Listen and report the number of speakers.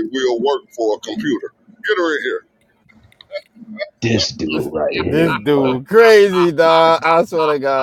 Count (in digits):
3